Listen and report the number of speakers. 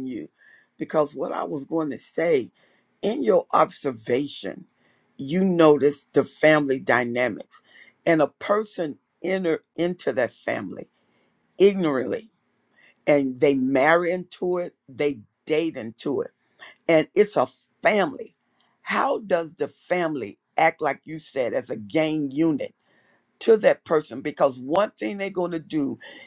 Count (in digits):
1